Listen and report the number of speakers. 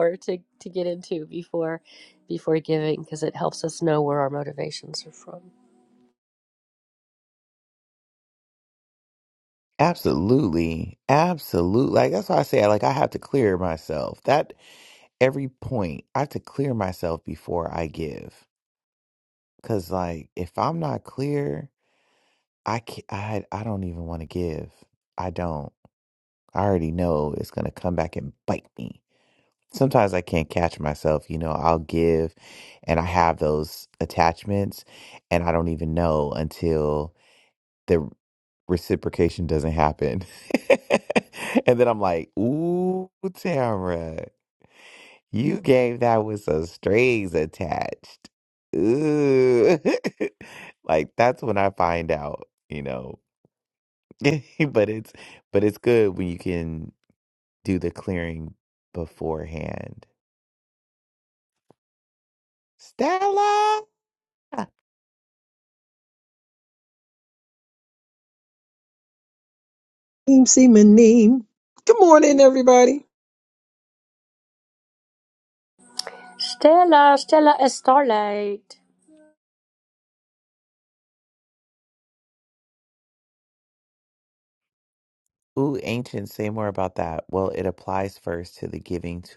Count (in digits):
3